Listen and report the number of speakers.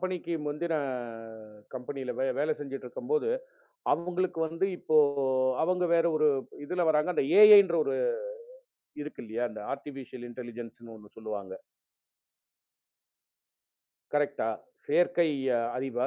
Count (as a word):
one